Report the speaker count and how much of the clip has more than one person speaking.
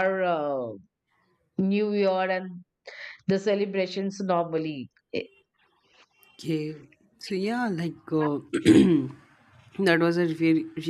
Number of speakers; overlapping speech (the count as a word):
two, no overlap